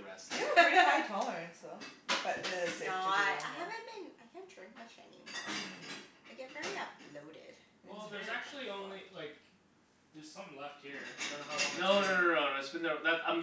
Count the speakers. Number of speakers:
four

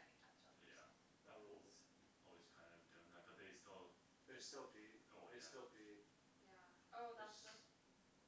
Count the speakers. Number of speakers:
three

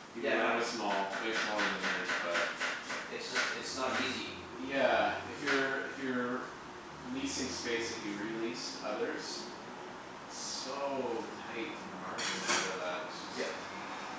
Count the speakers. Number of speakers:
two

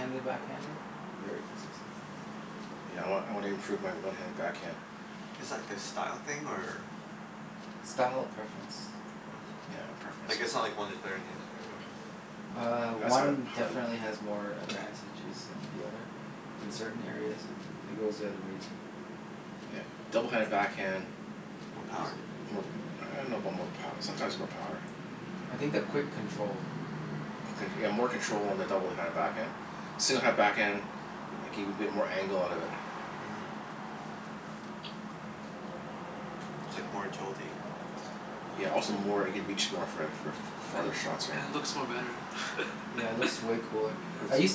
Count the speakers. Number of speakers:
four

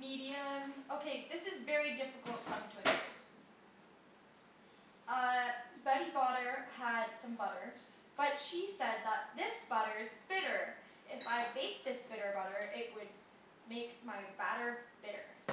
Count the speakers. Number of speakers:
one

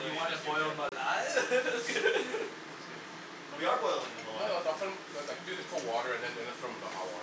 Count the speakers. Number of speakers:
three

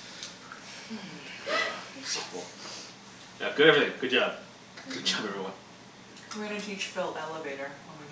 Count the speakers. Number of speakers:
two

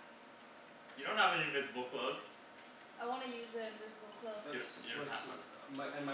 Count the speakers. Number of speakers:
three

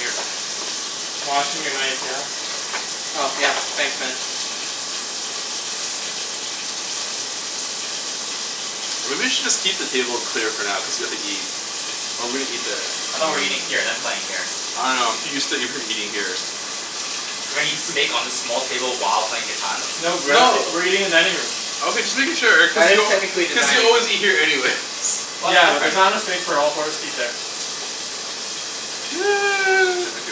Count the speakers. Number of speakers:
four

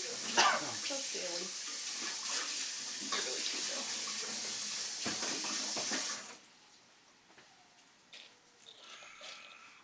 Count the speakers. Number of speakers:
one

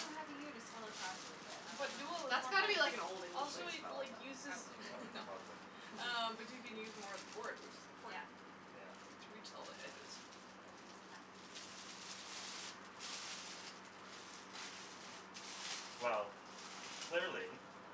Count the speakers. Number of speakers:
four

